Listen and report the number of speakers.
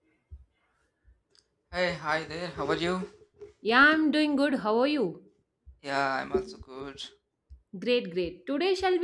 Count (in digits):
2